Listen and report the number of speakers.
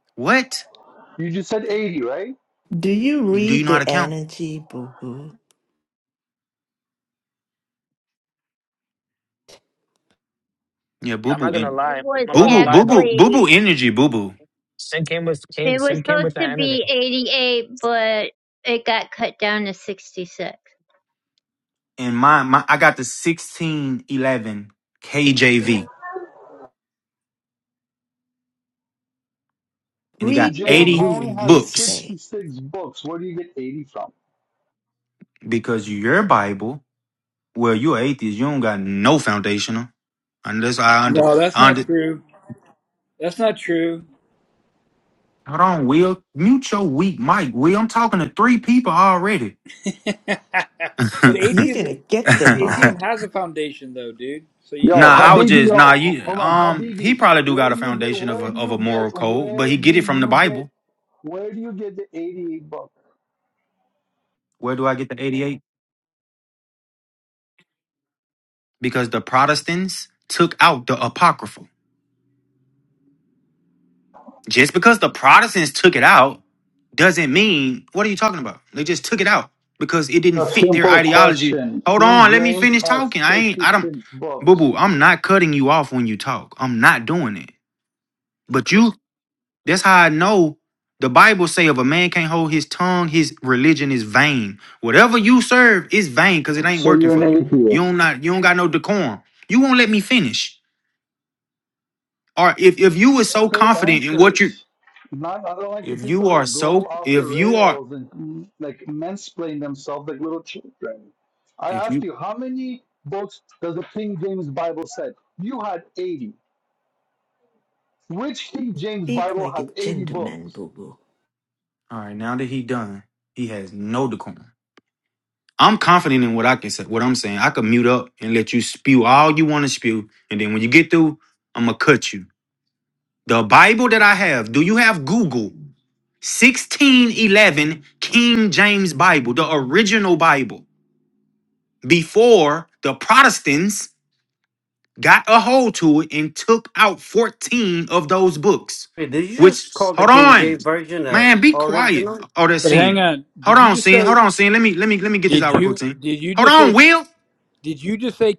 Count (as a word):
seven